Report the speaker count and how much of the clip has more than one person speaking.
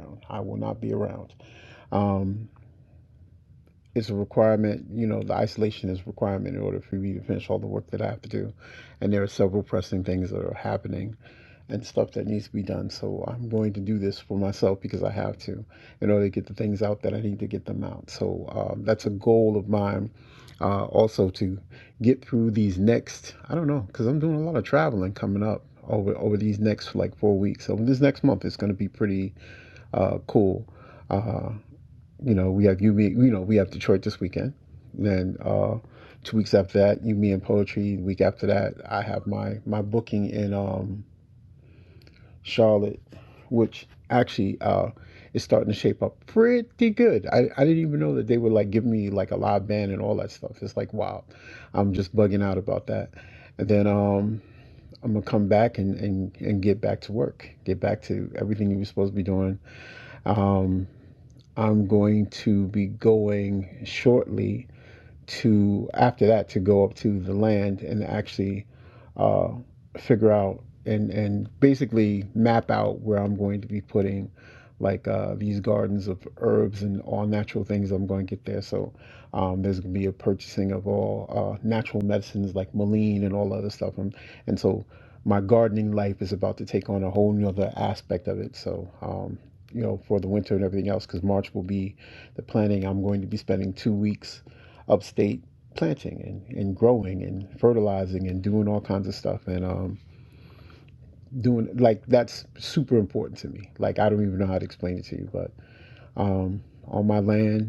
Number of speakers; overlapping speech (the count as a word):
one, no overlap